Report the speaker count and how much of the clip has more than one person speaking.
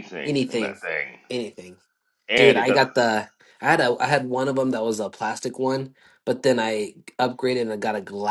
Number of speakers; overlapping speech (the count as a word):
two, about 13%